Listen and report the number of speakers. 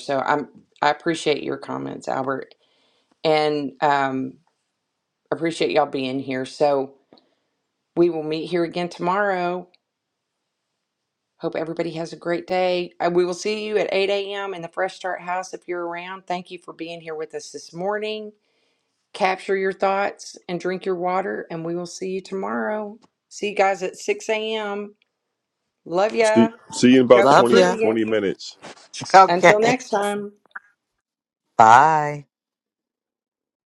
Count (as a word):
three